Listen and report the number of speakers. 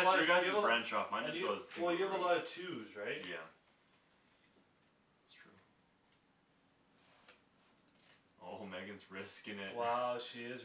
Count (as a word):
two